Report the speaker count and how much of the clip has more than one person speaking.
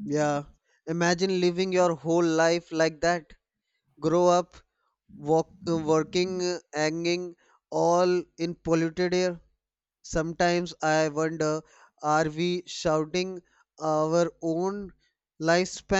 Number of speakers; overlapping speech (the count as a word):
one, no overlap